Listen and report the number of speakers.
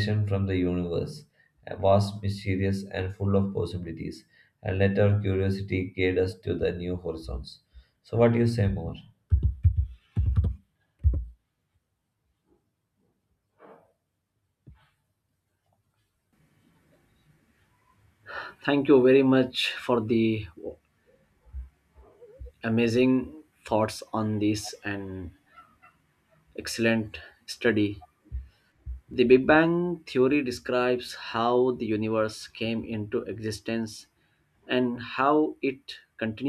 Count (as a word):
two